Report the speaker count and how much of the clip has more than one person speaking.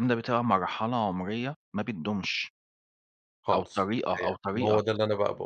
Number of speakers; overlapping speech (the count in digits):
2, about 11%